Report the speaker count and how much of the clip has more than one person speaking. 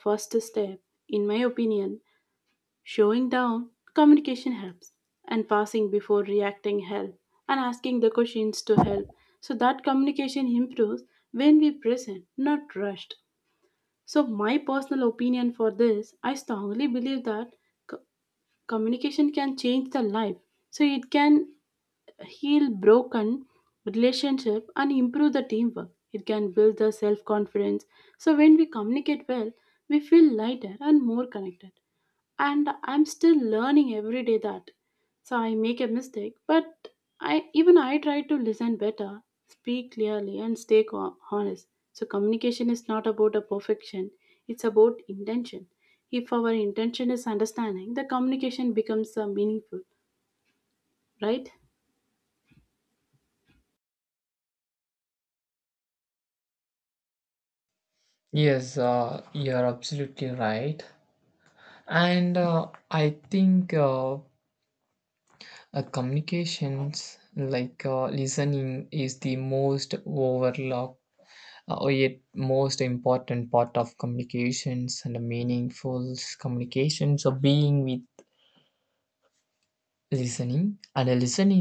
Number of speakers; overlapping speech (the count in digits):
2, no overlap